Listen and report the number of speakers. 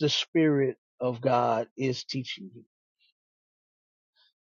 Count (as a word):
one